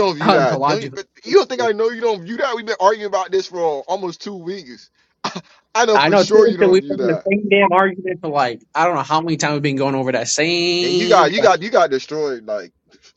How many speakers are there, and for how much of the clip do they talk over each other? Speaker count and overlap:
two, about 21%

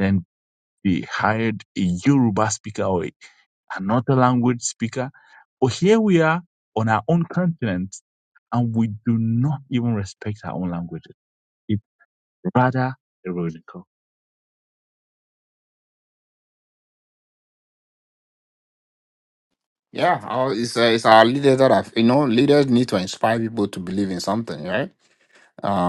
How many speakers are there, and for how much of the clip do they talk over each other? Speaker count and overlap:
two, no overlap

